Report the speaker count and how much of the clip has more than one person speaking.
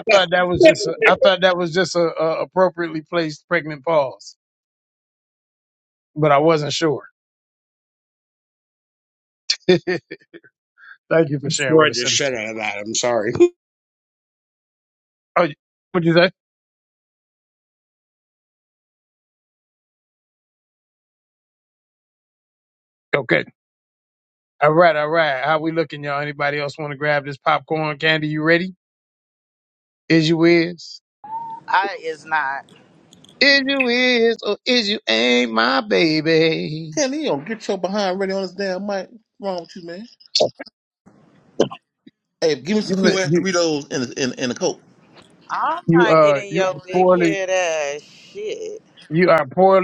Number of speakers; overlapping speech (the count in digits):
4, about 6%